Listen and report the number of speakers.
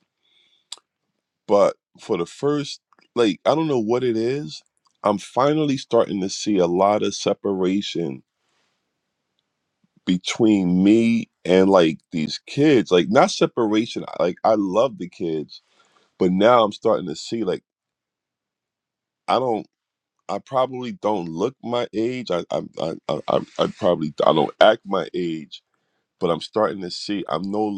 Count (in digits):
1